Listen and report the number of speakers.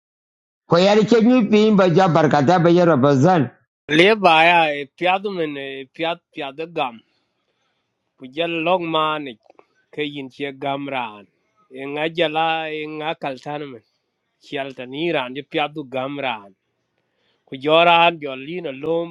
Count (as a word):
two